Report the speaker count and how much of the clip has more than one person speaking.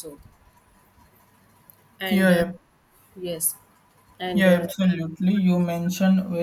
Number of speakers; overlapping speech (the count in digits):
2, about 12%